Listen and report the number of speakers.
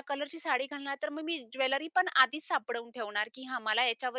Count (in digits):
1